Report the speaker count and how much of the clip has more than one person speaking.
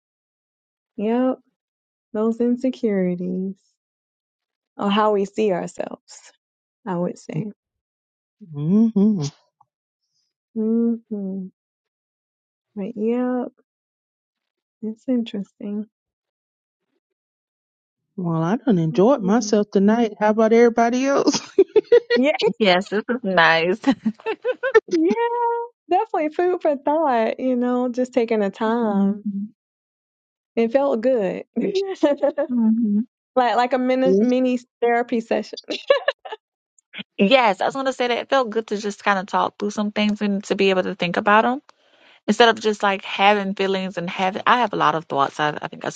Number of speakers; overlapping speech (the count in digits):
3, about 3%